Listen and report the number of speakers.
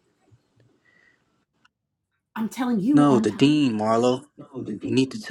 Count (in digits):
2